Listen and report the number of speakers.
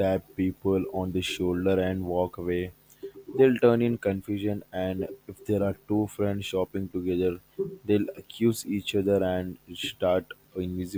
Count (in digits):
1